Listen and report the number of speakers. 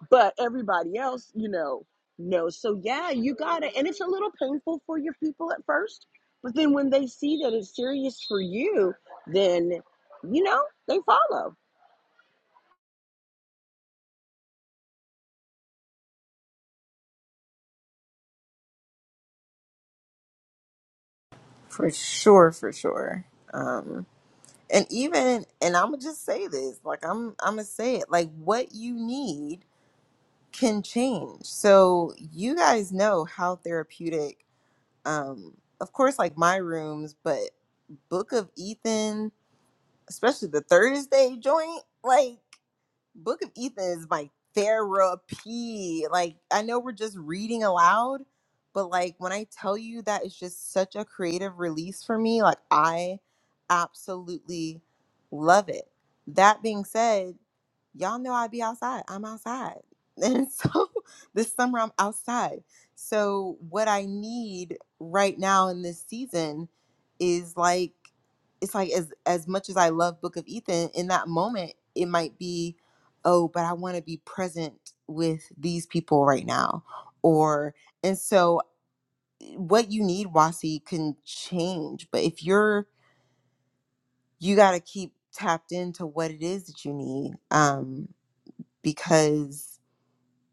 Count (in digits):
2